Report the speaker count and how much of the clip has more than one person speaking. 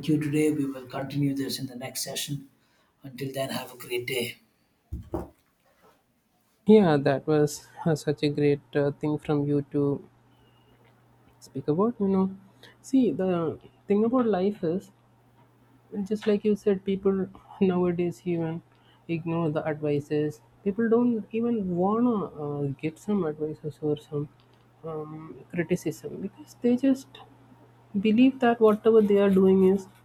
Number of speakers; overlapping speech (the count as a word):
two, no overlap